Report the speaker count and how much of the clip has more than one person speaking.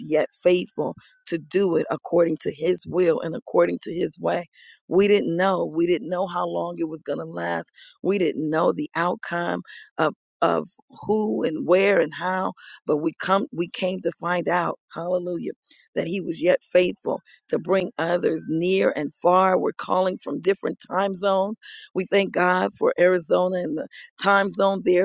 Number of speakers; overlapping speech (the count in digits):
1, no overlap